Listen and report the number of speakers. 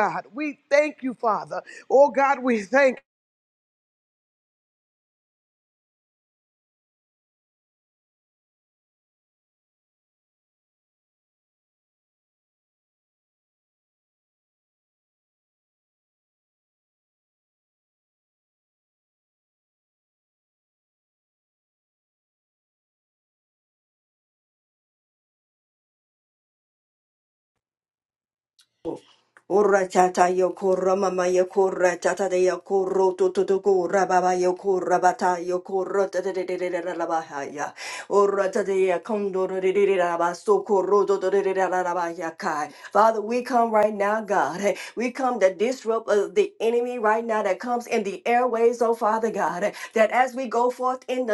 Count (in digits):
2